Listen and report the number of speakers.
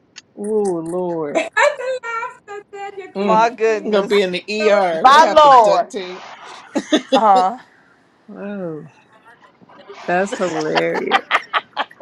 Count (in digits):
3